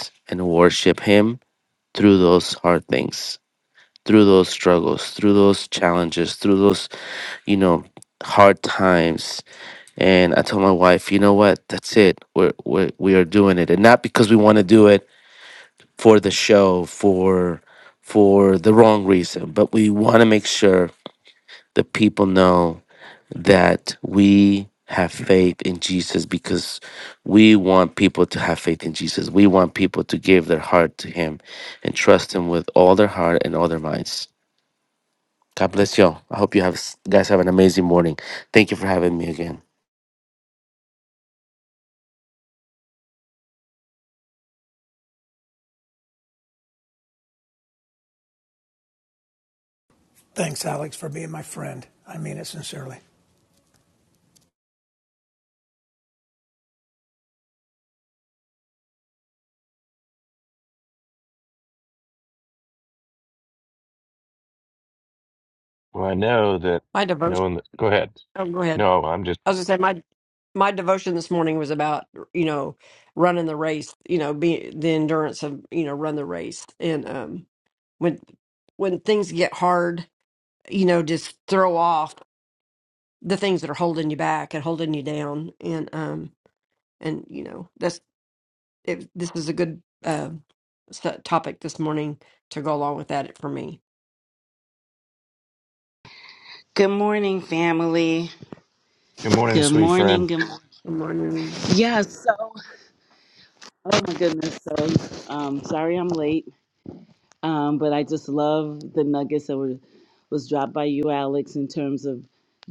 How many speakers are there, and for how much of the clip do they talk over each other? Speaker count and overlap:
5, about 1%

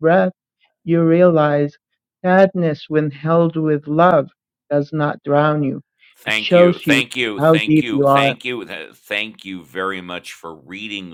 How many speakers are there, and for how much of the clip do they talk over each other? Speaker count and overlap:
2, about 15%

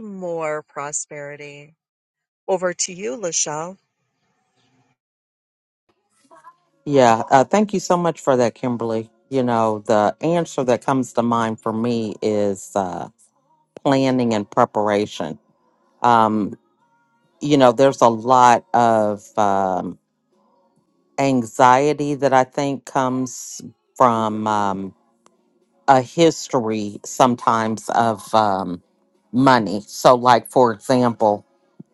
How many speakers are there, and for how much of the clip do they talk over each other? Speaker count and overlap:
2, no overlap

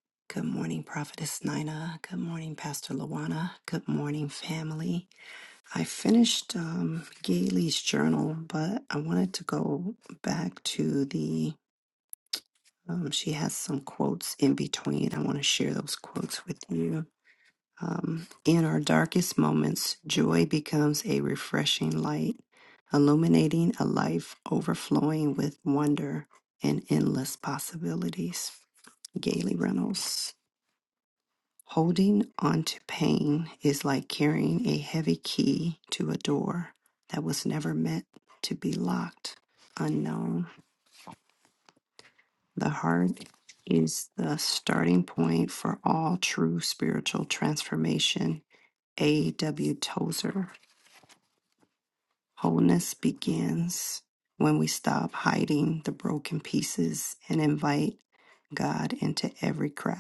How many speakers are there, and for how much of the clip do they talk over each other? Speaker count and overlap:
1, no overlap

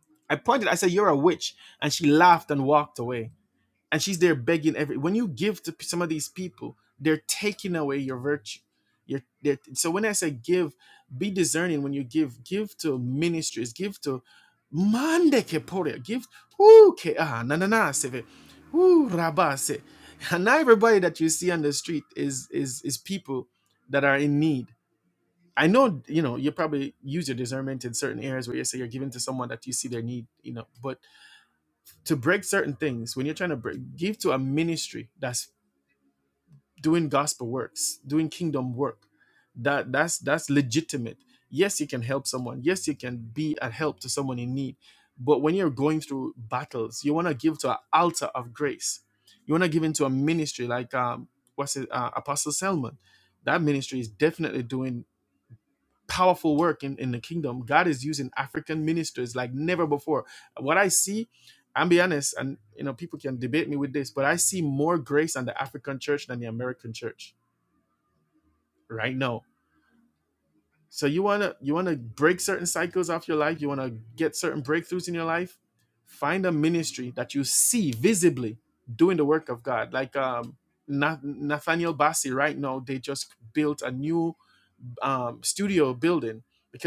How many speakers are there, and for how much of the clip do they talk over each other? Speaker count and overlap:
1, no overlap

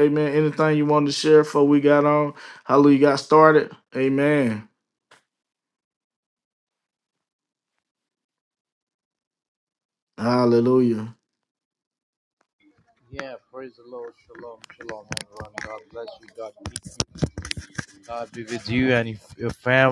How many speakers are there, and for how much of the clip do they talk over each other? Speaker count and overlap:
2, no overlap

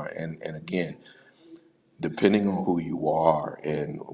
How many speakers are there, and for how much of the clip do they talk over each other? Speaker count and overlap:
1, no overlap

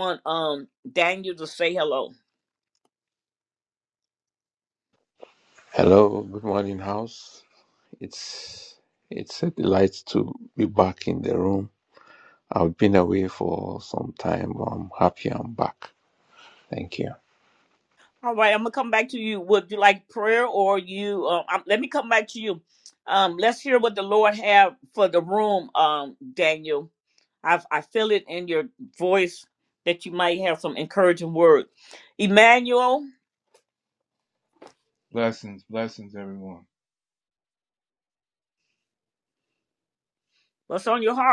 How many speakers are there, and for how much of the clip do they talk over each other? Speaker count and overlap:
3, no overlap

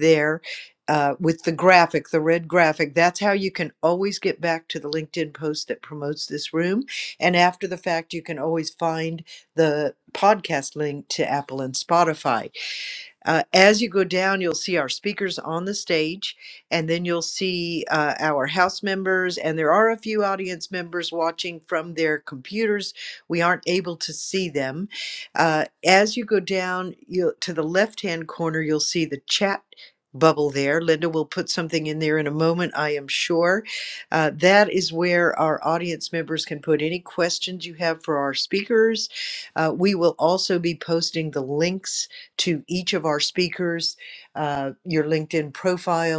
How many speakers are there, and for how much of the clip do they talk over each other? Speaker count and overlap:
1, no overlap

